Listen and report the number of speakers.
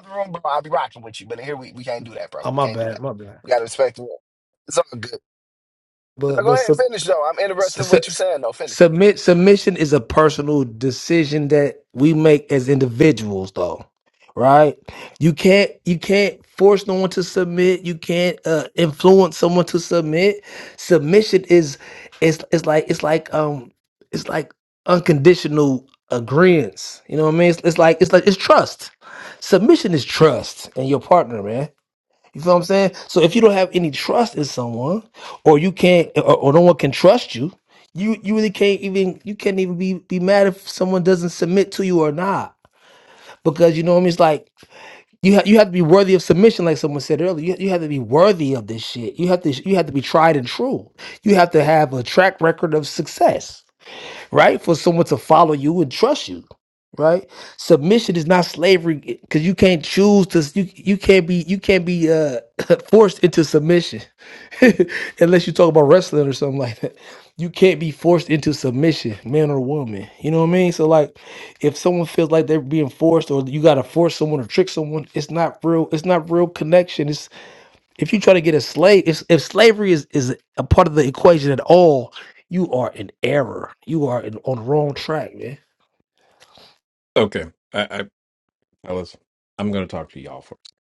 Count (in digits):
3